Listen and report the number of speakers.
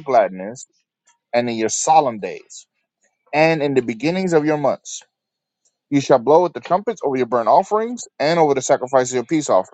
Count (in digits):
1